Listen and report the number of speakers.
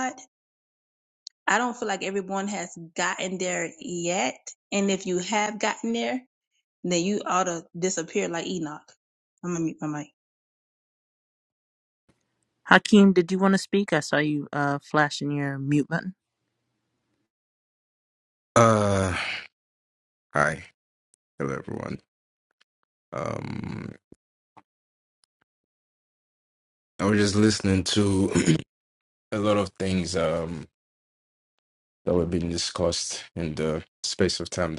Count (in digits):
3